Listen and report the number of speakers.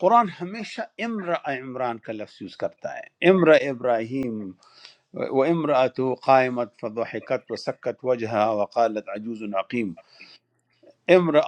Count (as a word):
one